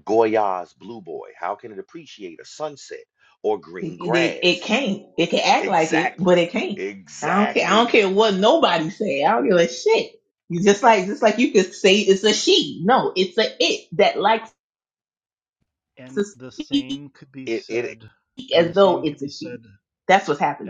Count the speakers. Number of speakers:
three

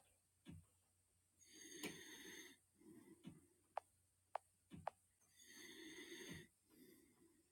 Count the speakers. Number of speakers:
zero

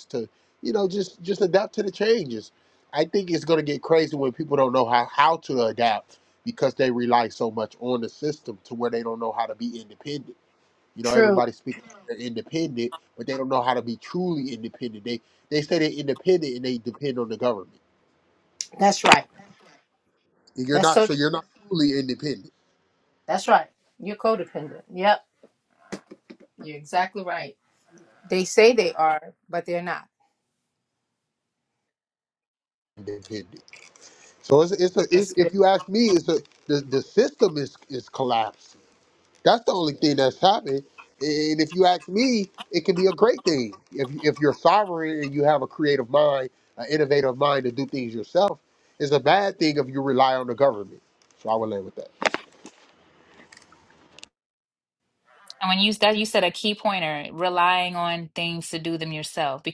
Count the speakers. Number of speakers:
three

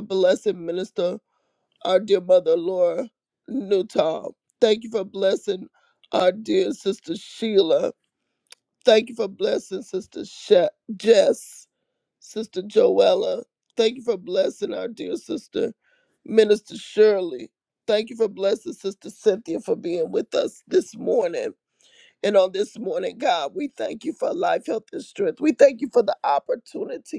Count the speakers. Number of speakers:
one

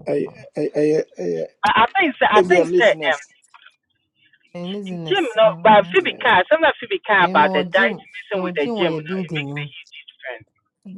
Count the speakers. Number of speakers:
three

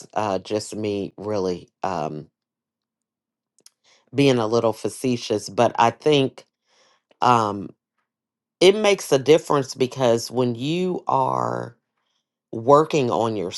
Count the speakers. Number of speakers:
one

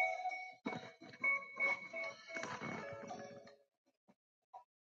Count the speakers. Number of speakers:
zero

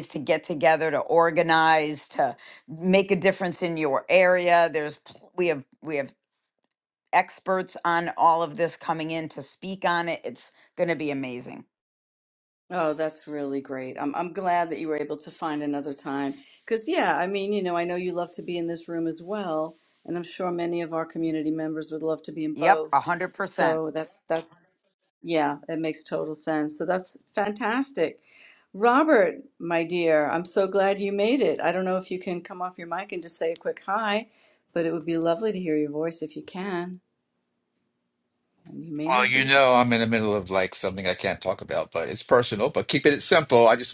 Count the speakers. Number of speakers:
three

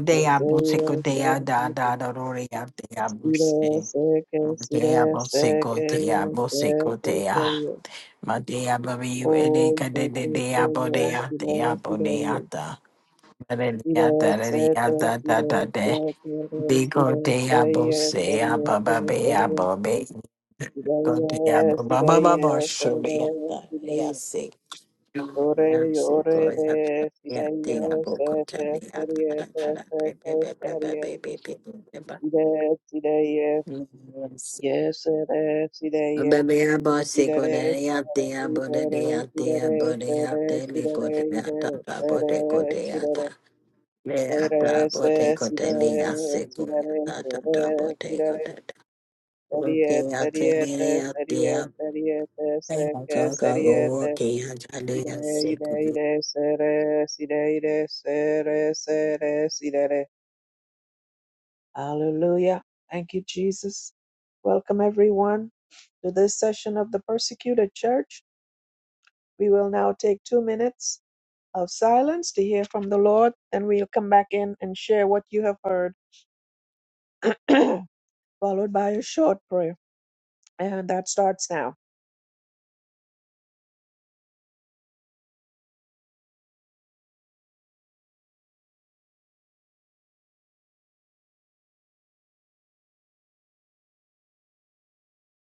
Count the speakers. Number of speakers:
two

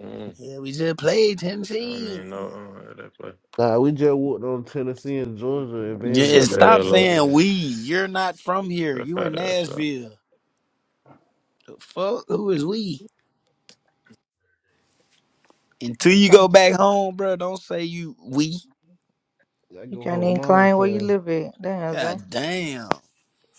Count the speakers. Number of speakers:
four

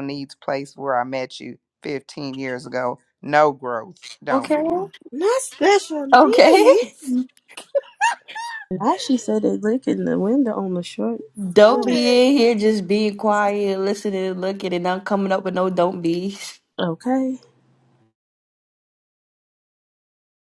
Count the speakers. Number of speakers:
four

